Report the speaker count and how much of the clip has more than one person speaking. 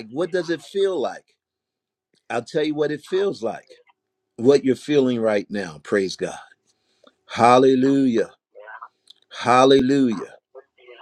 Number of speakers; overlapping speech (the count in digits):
1, no overlap